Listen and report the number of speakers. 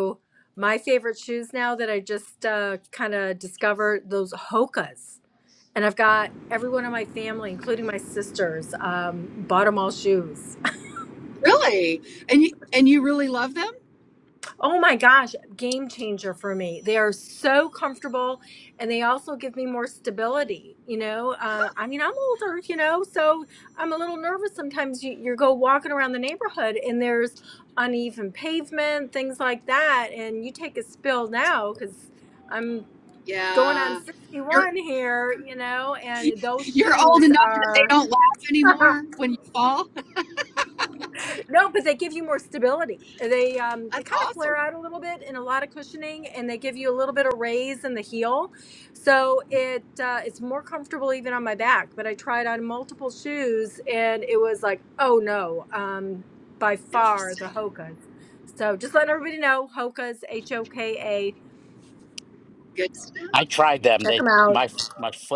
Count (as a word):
three